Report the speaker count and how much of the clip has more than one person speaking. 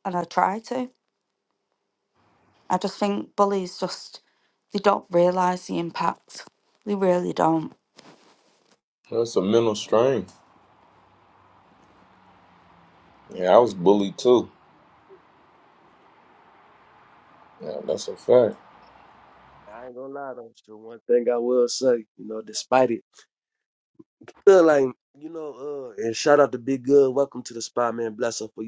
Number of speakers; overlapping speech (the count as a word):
three, no overlap